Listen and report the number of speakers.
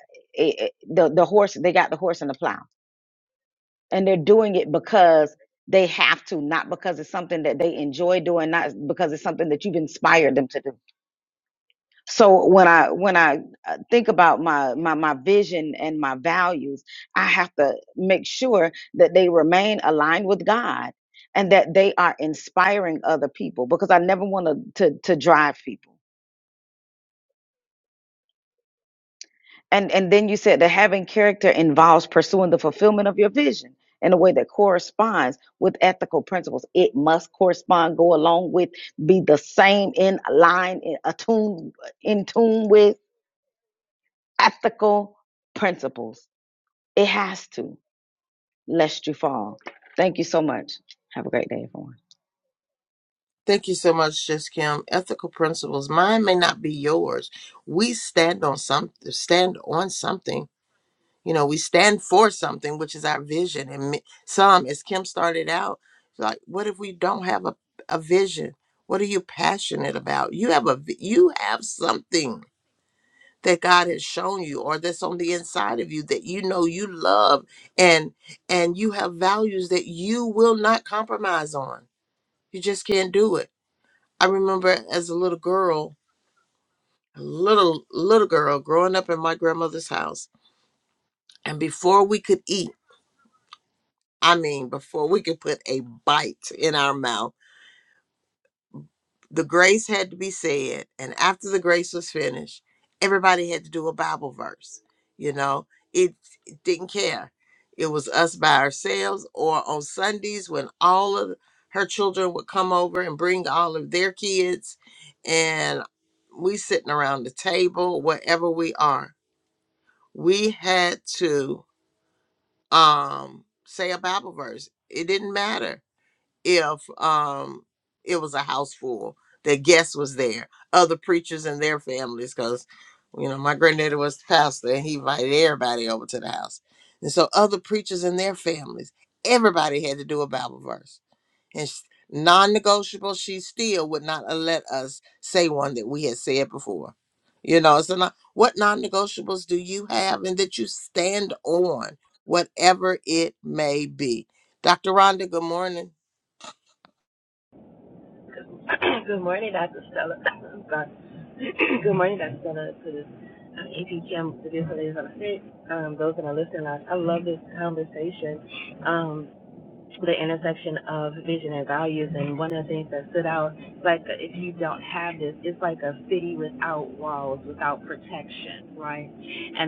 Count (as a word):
three